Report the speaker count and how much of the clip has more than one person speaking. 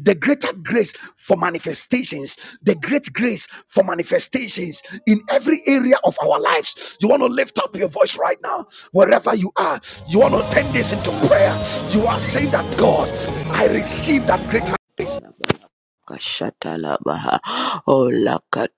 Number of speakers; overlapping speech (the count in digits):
2, no overlap